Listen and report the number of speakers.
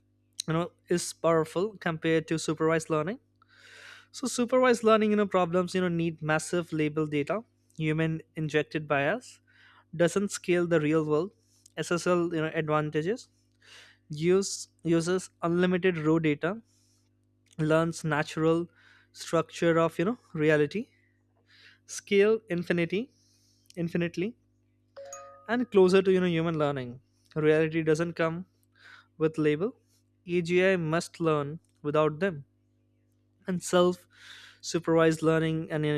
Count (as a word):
one